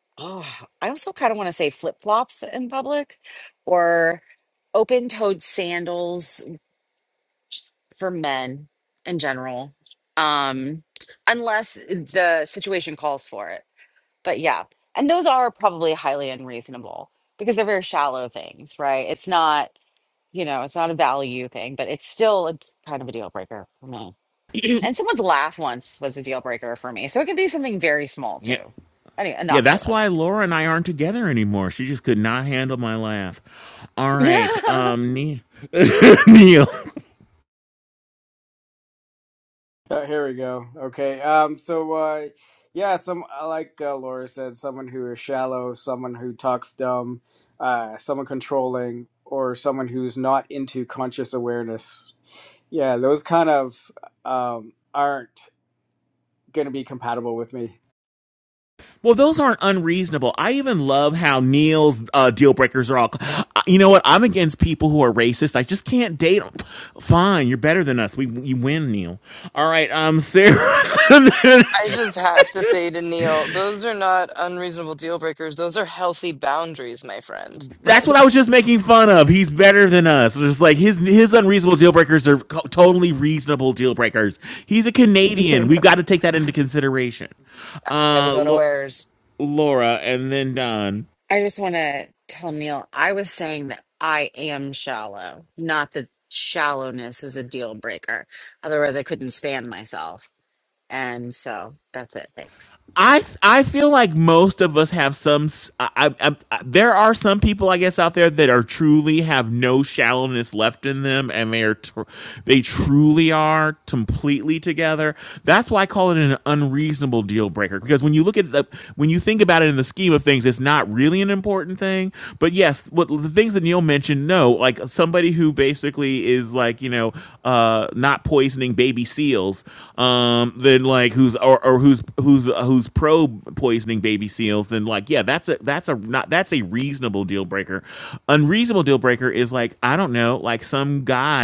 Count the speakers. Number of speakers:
four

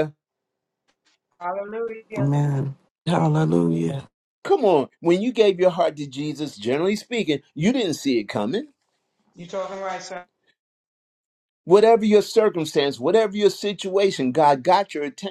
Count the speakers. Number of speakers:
three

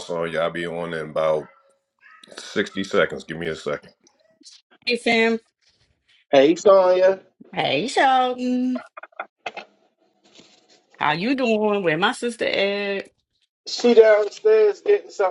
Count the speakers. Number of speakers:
three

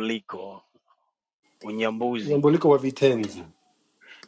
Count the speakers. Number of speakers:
two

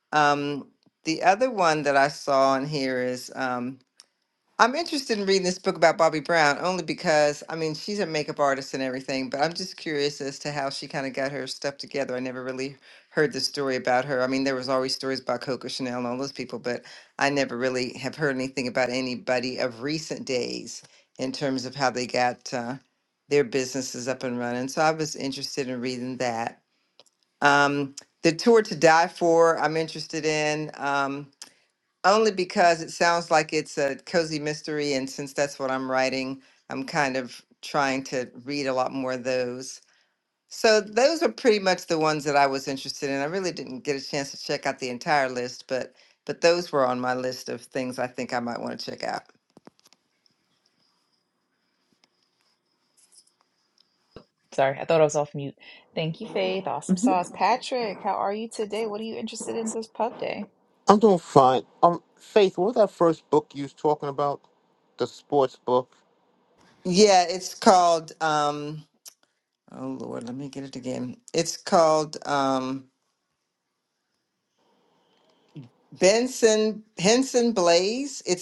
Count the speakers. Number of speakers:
three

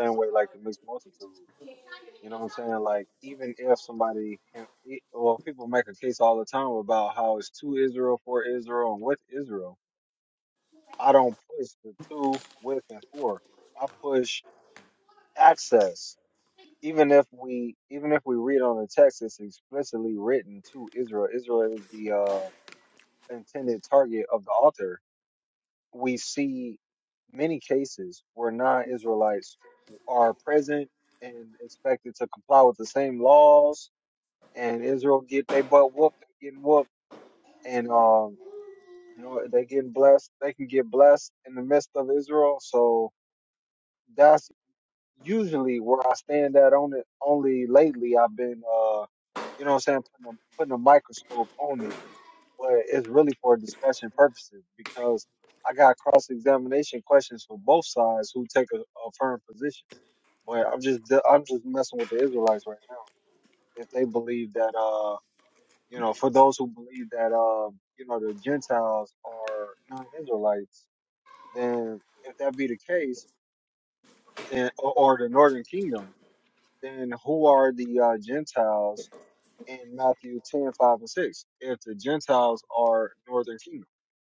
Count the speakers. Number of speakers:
one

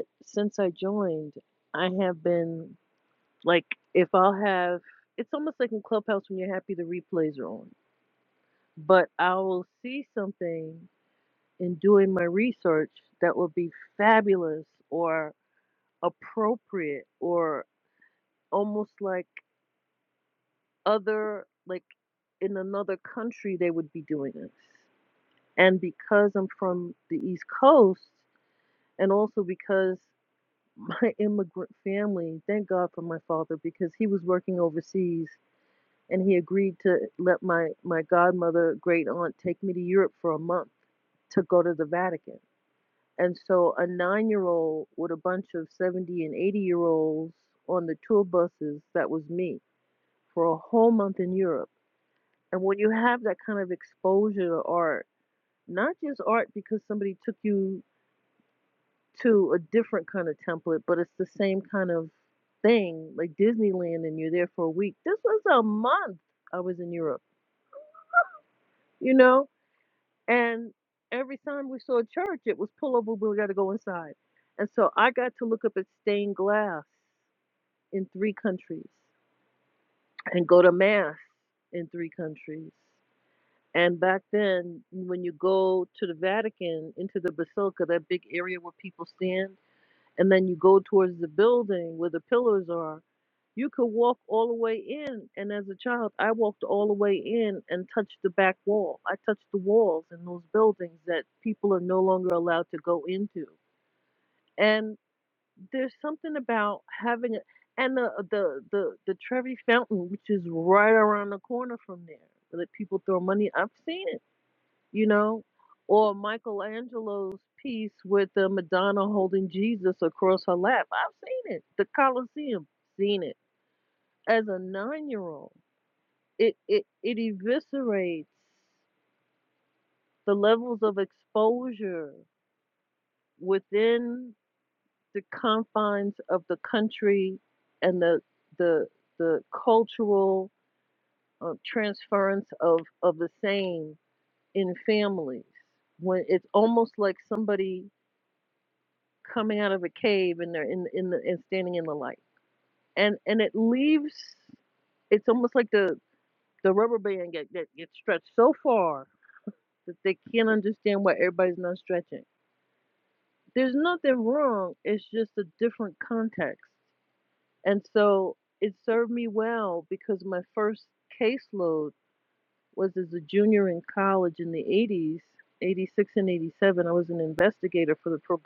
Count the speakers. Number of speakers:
one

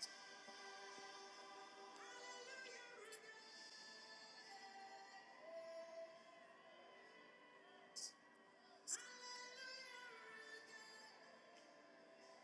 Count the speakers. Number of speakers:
zero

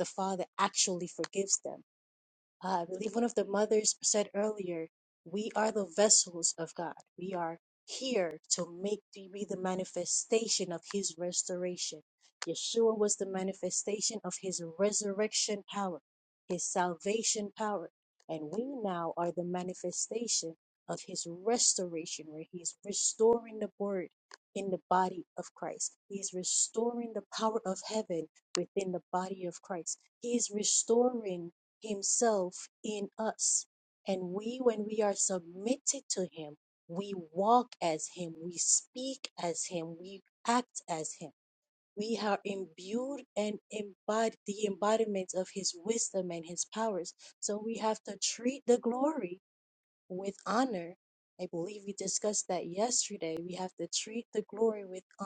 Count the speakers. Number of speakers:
one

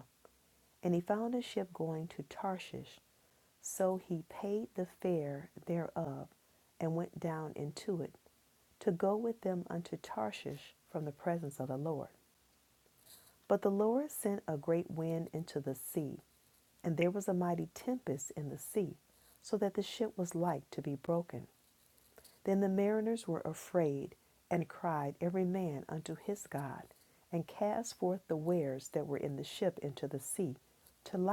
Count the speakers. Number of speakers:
one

